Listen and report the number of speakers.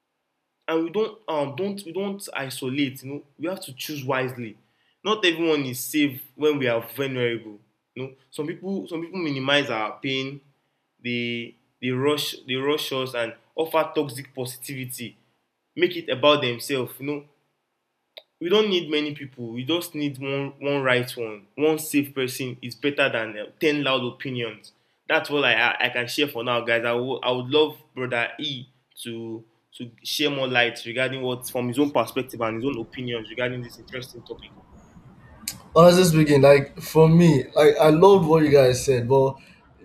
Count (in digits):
2